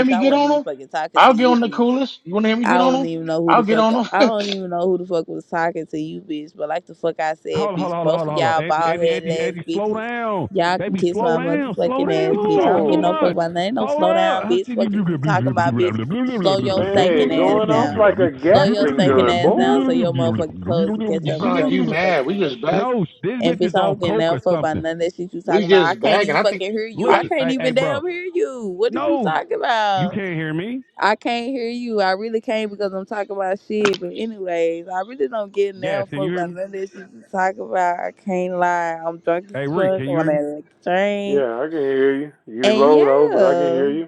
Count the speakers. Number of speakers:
4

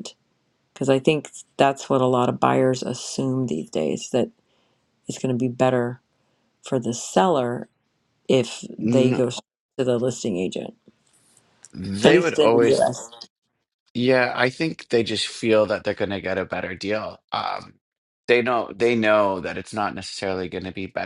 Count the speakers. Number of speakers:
2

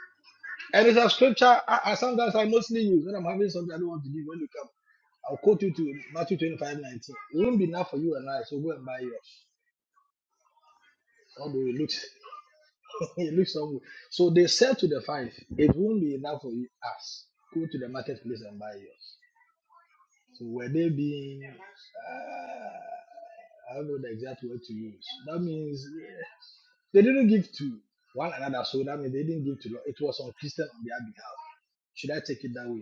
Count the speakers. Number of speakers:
1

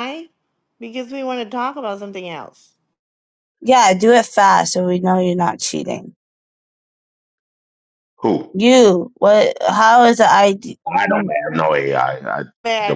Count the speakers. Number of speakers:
3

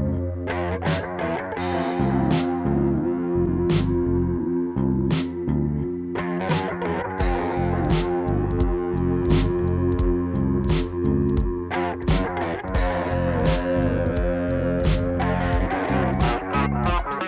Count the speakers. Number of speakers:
0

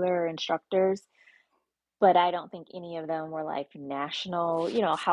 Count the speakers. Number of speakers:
1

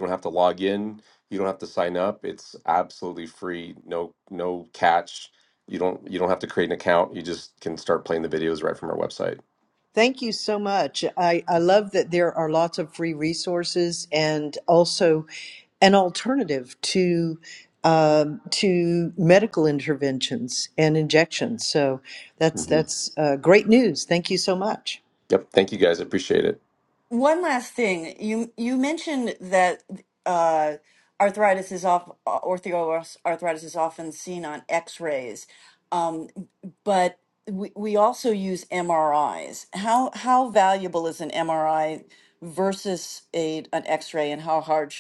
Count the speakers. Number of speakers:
3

